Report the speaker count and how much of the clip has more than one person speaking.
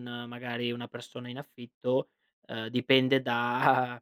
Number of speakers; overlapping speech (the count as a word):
one, no overlap